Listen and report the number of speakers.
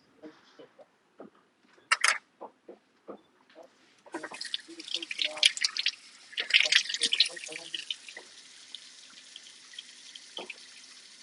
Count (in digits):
0